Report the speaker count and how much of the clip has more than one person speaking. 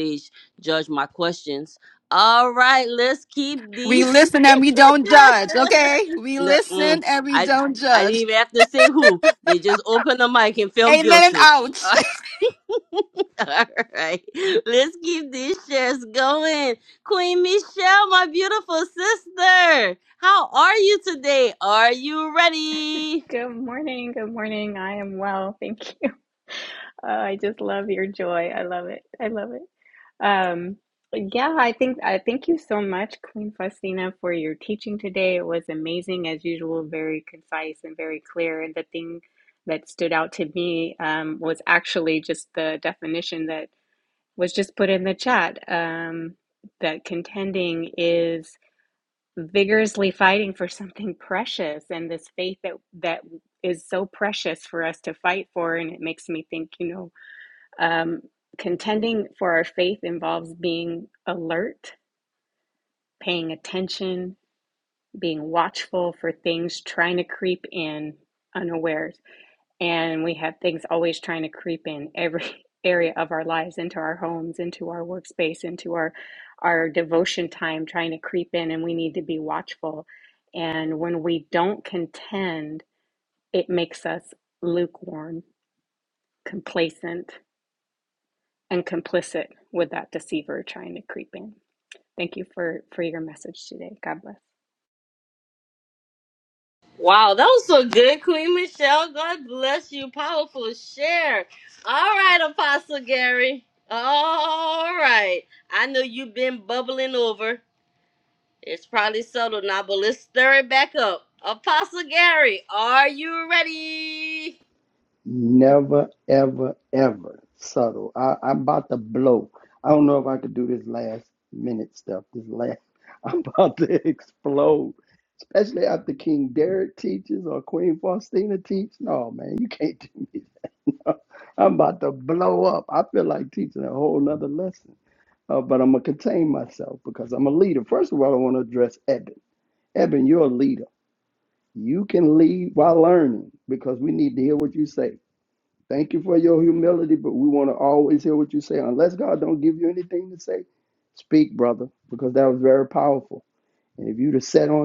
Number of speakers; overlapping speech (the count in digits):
4, about 1%